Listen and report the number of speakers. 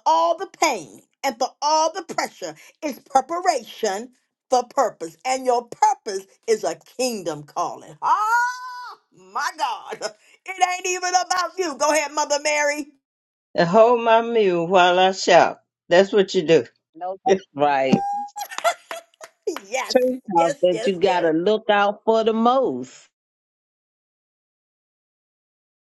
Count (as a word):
three